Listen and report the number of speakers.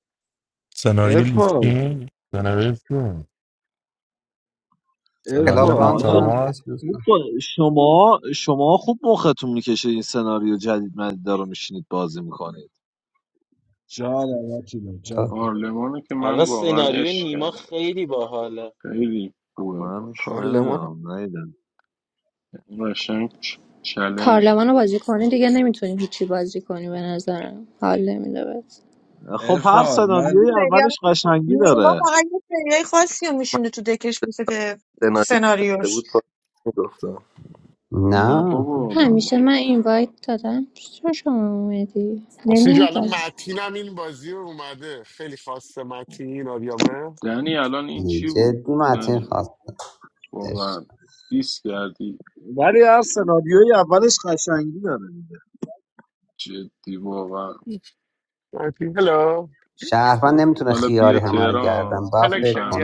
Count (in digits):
10